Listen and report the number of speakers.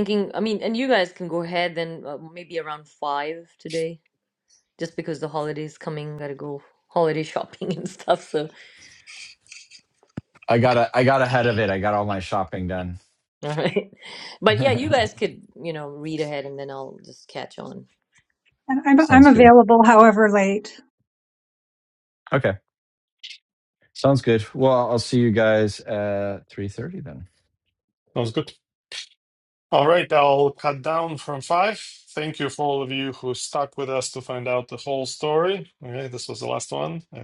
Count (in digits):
4